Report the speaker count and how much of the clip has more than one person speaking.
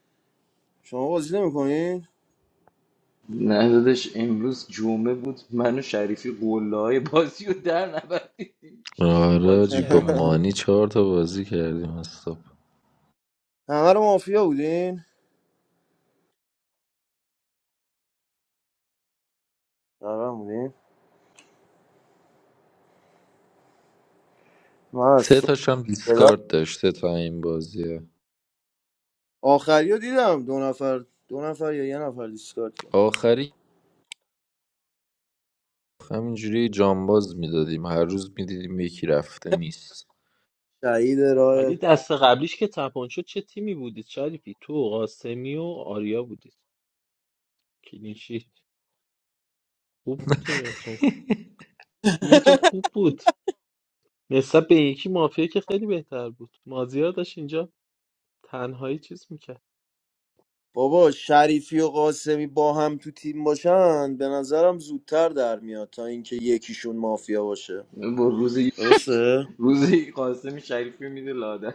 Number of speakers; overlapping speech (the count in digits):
4, about 3%